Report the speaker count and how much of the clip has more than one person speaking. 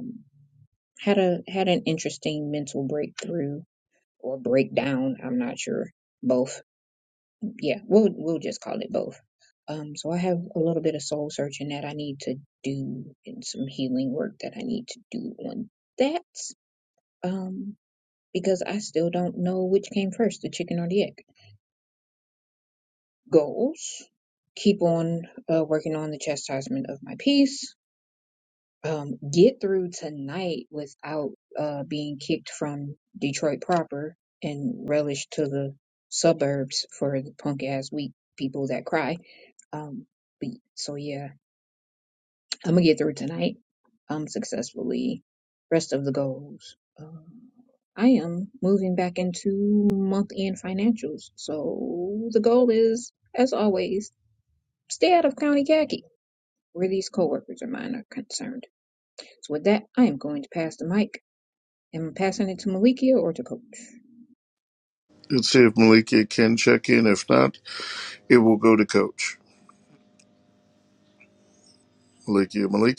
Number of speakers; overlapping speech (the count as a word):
two, no overlap